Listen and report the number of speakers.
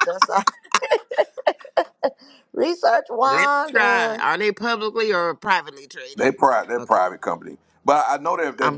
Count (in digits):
3